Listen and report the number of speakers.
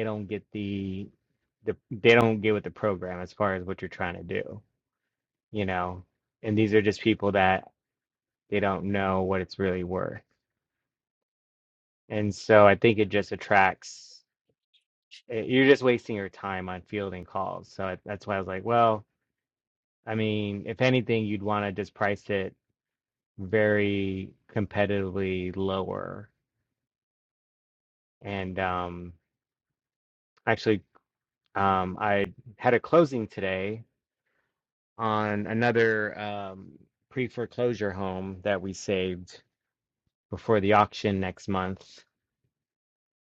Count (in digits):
1